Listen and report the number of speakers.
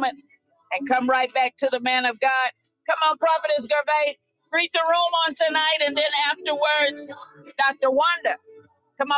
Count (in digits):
1